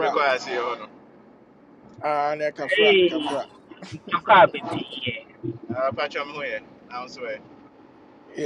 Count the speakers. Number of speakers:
3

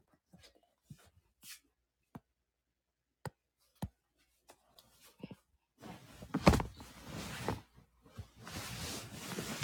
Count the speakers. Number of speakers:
0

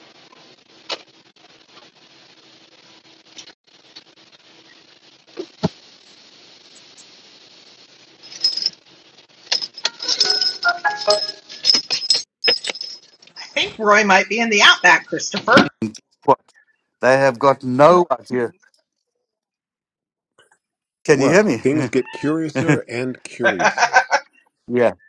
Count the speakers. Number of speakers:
3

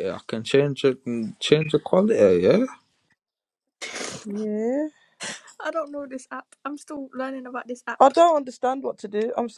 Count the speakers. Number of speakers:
3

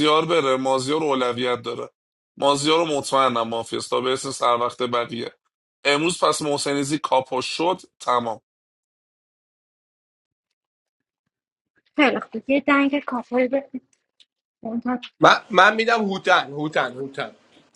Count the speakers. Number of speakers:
3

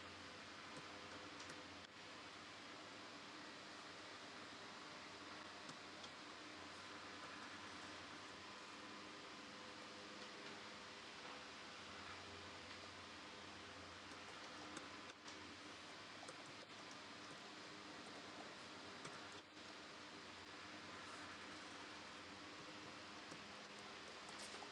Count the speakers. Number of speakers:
0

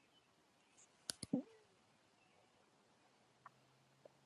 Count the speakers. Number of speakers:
0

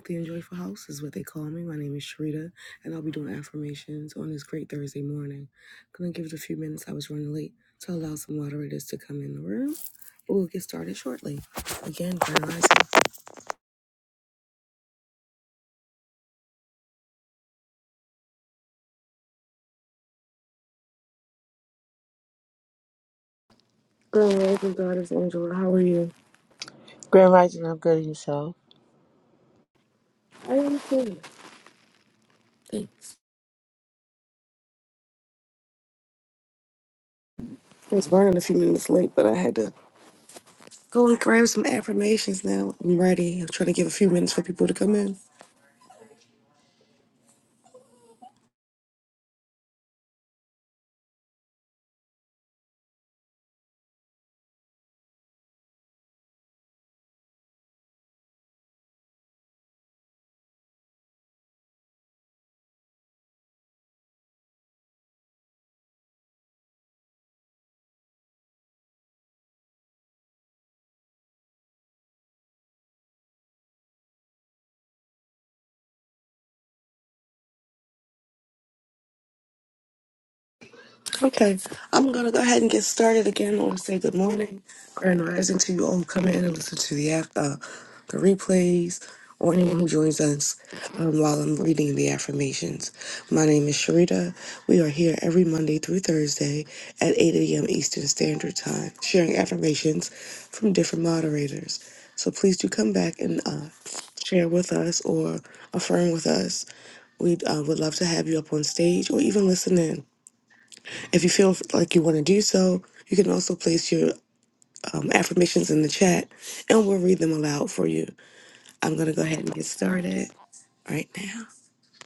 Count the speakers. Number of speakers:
2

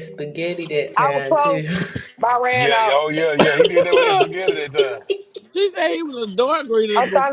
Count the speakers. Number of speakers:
4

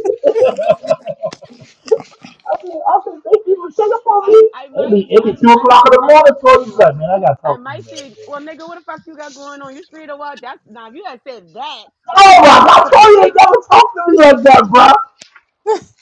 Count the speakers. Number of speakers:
2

